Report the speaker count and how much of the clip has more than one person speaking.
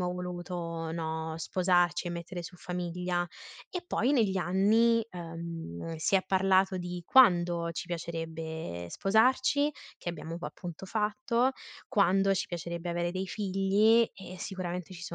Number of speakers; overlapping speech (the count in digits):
1, no overlap